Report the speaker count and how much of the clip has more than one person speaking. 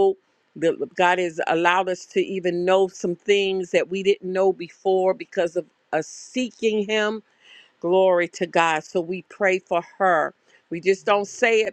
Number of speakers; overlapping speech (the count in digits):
1, no overlap